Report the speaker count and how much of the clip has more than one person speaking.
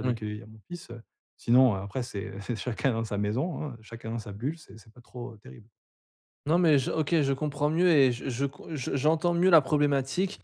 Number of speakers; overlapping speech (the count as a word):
two, about 1%